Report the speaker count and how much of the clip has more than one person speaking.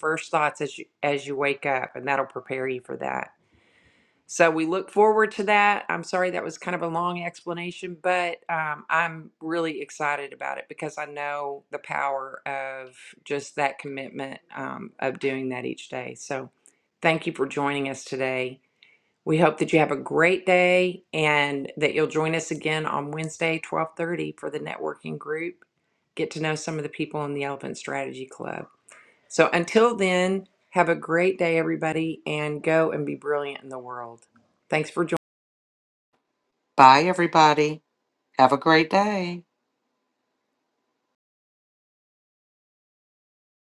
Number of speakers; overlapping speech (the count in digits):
2, no overlap